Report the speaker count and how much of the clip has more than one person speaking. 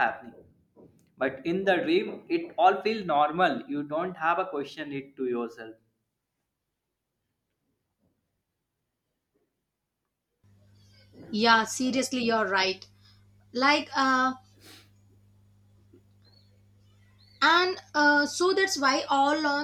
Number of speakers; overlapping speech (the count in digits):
2, no overlap